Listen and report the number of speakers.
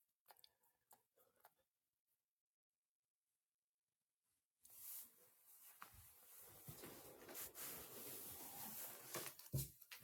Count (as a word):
zero